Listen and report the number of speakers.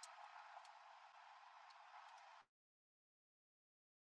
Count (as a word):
zero